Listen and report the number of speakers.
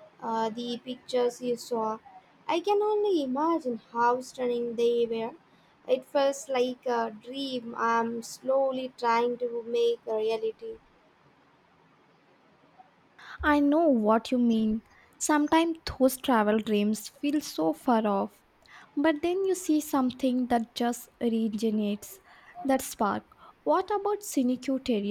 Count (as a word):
two